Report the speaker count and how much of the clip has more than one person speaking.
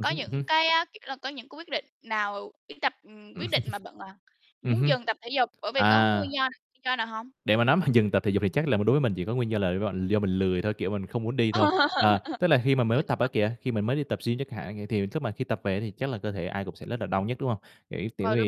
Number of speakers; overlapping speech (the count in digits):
2, about 8%